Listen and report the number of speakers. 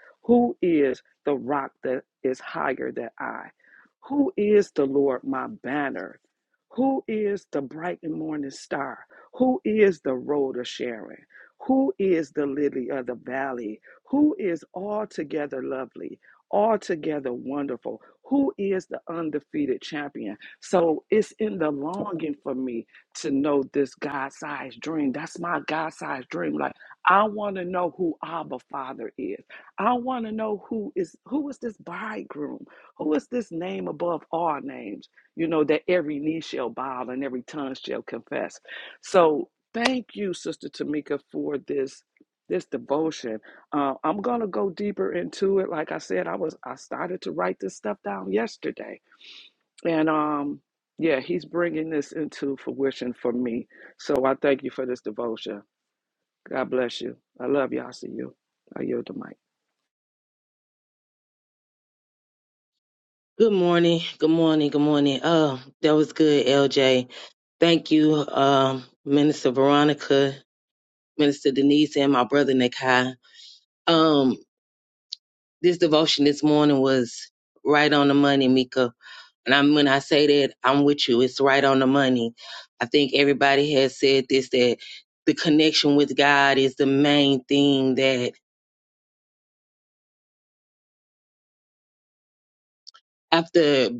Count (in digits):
2